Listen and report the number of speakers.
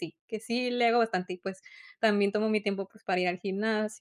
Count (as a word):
one